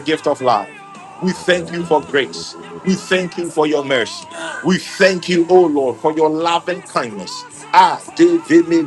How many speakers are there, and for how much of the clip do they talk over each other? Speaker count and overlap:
one, no overlap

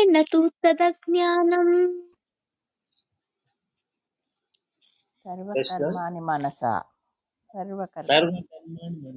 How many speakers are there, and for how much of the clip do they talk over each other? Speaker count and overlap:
three, about 7%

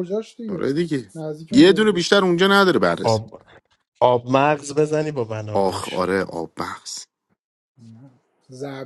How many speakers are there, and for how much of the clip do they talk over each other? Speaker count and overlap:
three, about 14%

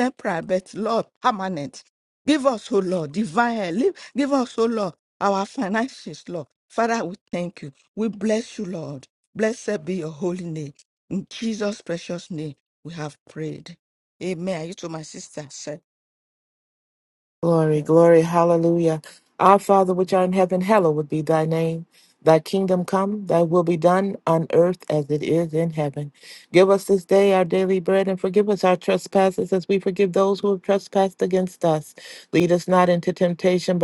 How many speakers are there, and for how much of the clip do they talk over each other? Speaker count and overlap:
two, no overlap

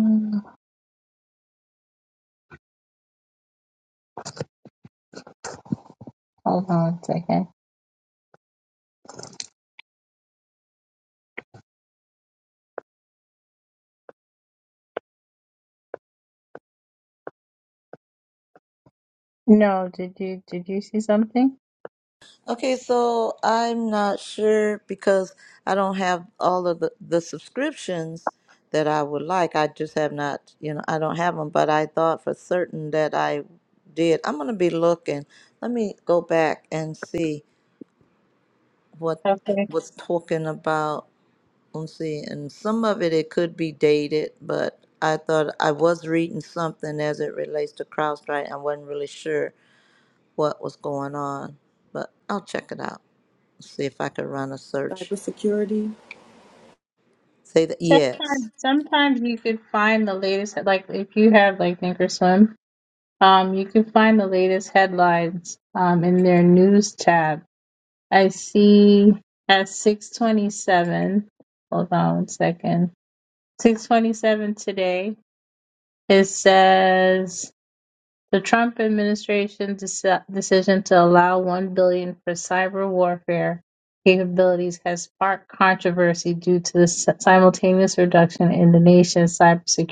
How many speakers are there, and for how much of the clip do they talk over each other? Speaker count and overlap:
three, about 1%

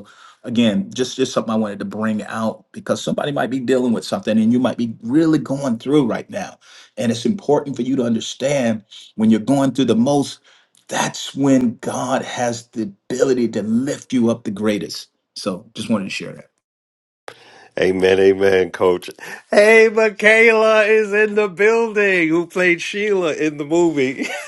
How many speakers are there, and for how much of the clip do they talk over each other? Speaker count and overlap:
two, no overlap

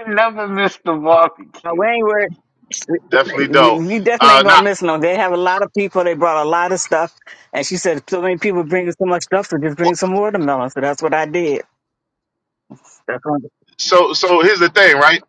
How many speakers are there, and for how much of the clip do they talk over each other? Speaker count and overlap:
three, about 7%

